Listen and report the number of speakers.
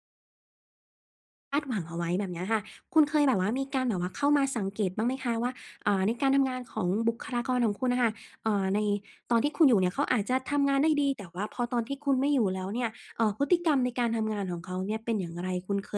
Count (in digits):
1